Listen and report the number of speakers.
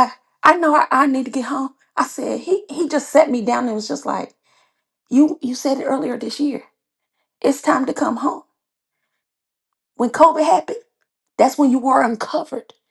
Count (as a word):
one